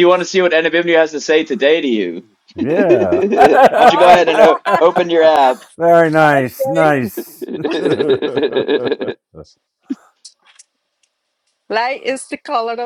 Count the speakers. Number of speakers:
three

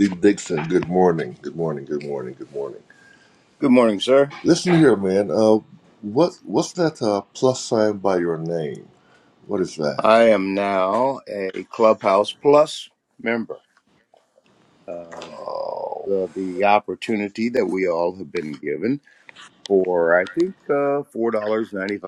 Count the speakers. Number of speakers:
two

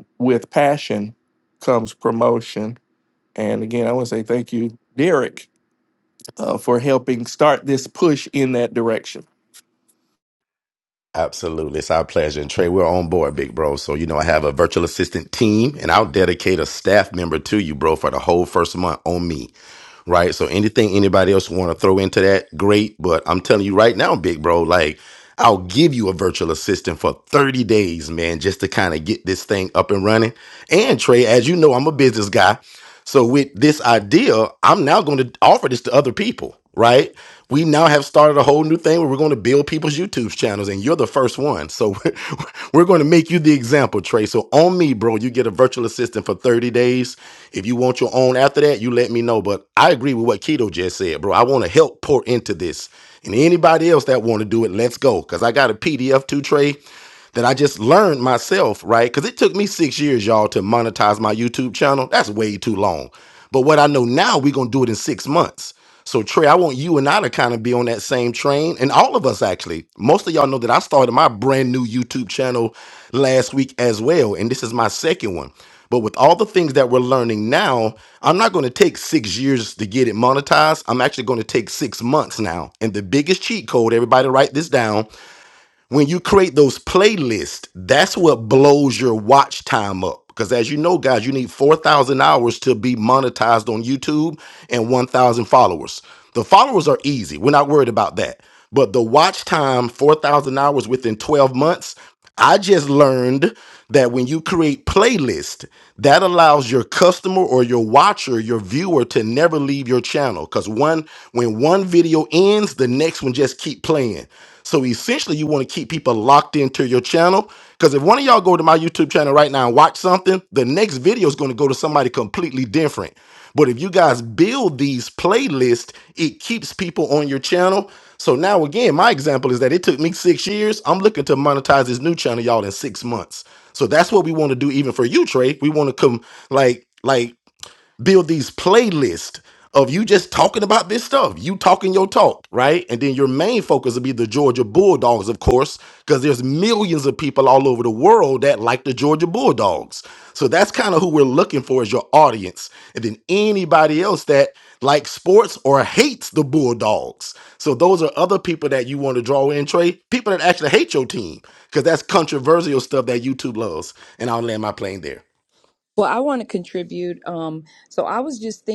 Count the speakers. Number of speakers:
three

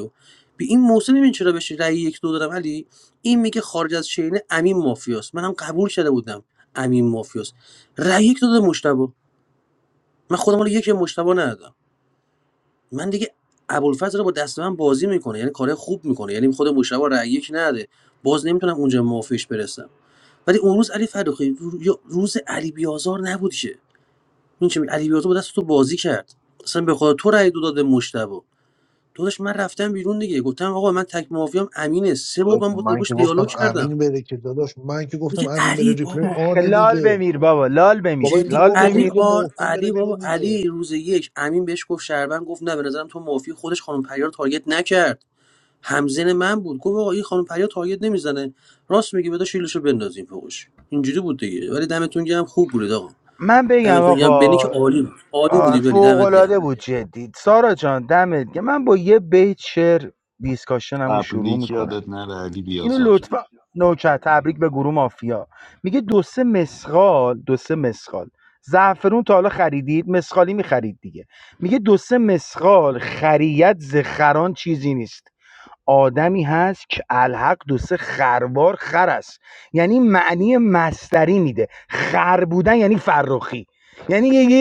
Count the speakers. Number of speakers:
four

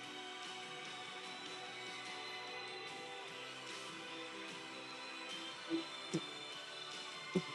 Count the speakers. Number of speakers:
zero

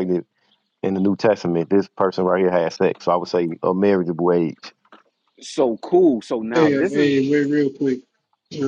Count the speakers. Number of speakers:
three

